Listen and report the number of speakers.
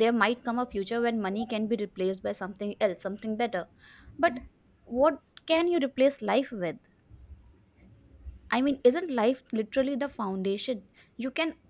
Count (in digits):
1